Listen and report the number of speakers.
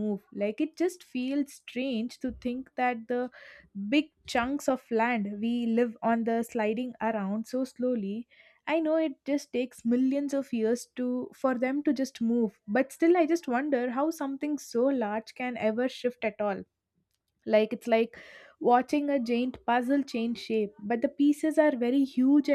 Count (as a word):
one